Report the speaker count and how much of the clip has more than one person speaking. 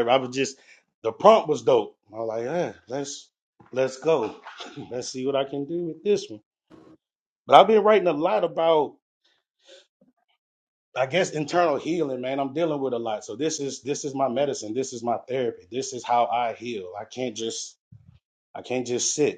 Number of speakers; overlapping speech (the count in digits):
1, no overlap